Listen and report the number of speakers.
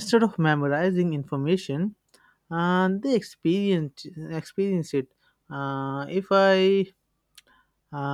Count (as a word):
one